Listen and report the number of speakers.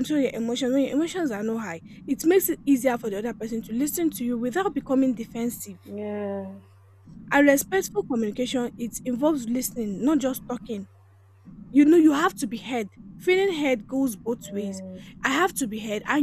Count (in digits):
2